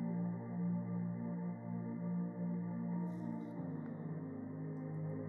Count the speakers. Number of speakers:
0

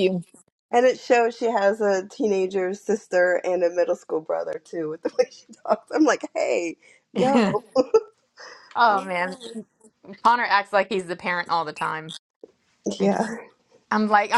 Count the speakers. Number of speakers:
2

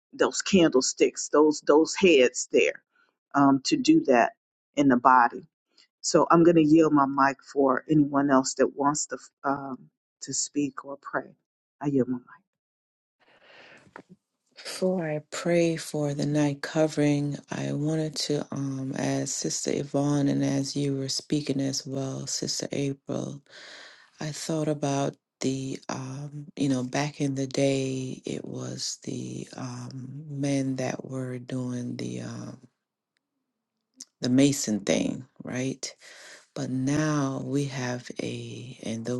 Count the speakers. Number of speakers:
2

